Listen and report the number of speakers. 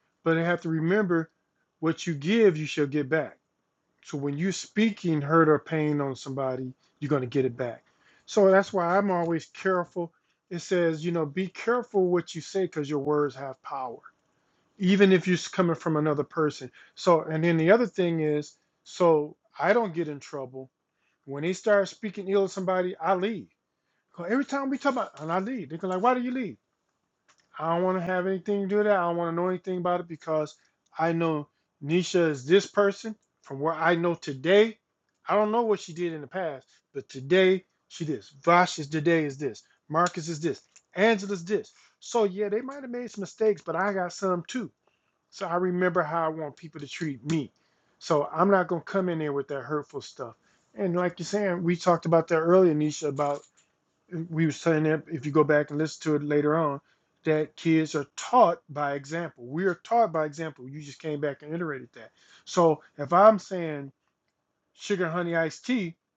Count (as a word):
one